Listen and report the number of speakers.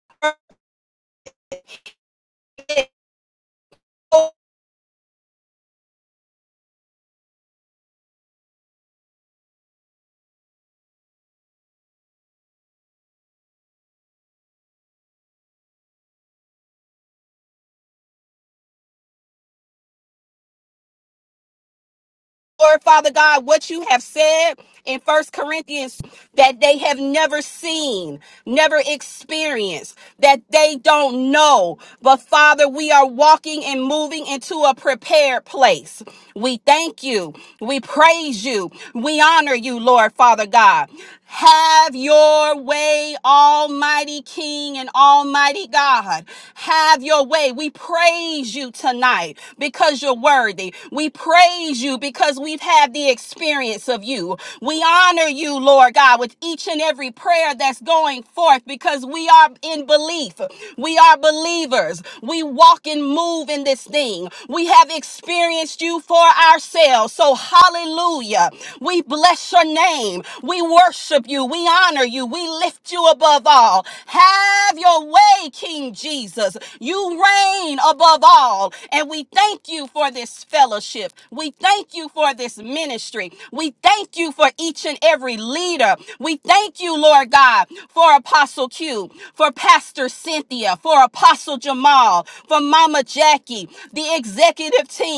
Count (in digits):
1